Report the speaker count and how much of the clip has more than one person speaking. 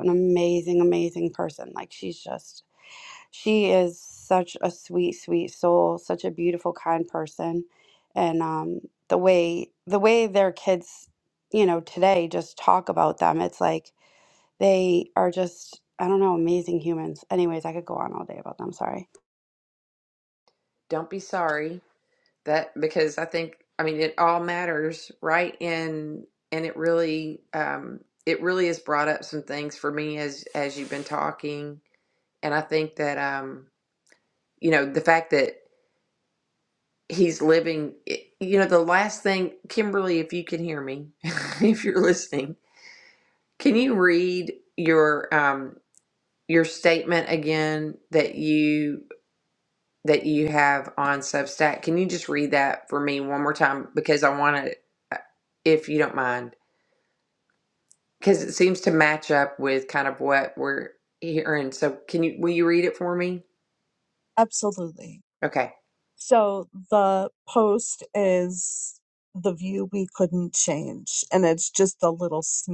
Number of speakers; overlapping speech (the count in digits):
3, under 1%